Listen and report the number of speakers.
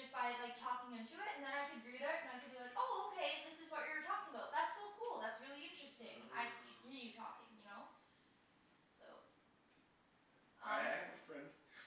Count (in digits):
2